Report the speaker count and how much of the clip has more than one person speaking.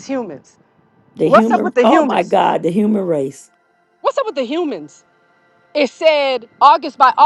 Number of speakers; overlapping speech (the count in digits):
2, about 13%